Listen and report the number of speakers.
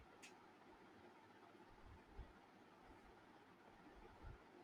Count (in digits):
0